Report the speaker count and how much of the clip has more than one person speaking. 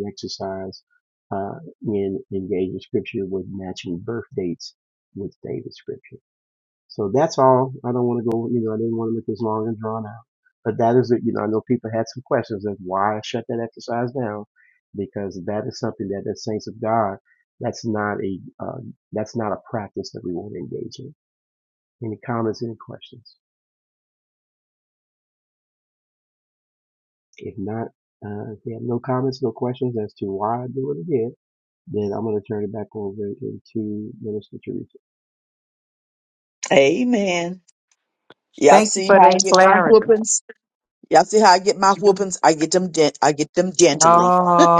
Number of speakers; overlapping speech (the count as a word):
three, about 2%